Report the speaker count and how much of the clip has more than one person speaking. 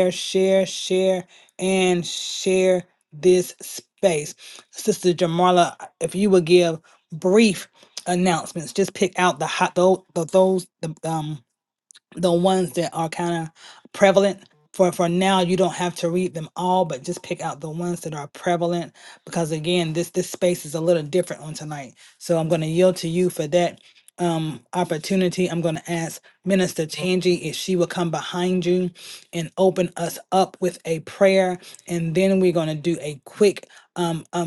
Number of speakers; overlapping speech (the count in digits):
1, no overlap